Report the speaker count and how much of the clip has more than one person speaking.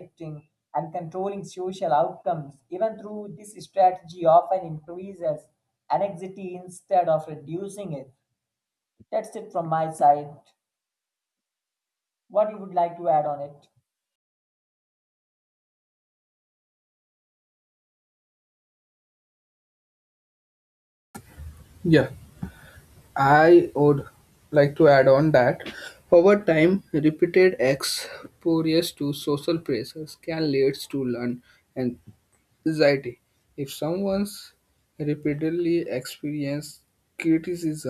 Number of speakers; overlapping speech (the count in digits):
2, no overlap